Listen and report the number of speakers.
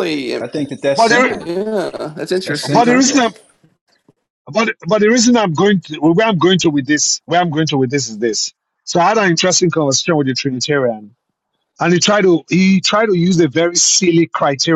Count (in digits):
3